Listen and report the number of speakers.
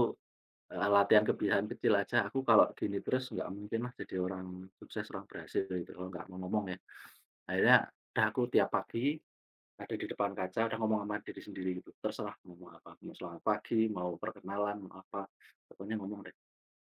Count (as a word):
one